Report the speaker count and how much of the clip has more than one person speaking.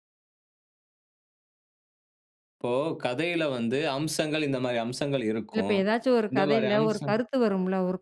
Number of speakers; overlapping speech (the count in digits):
2, about 14%